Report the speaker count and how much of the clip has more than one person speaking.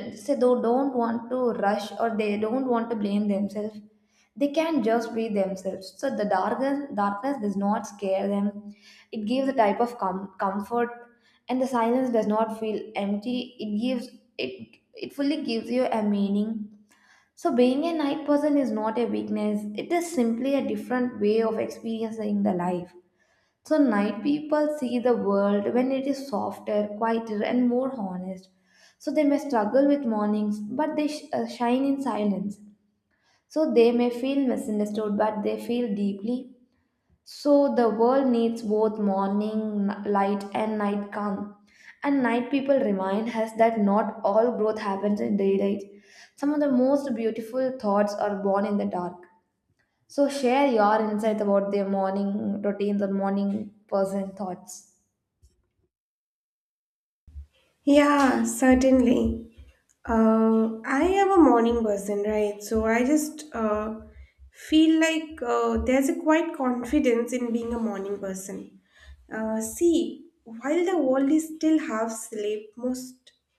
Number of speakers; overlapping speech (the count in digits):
2, no overlap